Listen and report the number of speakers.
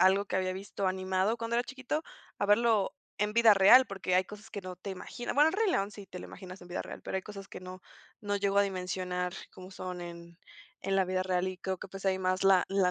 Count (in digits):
1